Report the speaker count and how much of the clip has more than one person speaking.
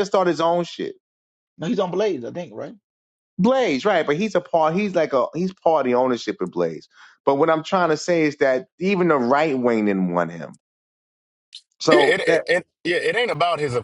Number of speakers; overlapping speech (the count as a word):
three, about 4%